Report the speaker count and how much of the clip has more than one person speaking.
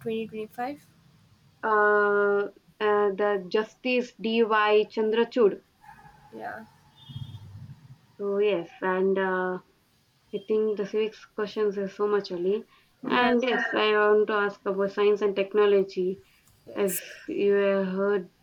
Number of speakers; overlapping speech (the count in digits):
2, about 2%